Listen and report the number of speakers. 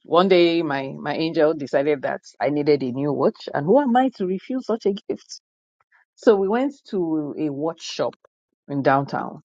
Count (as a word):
one